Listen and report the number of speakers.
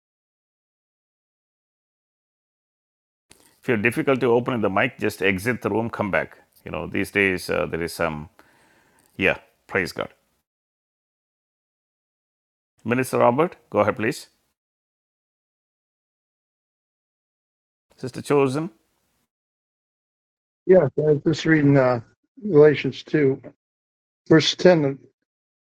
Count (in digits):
2